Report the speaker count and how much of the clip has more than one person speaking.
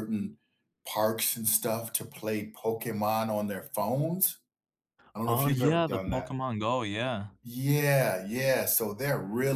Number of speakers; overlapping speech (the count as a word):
two, about 11%